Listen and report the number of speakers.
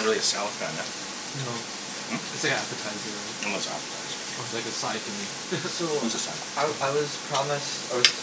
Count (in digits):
3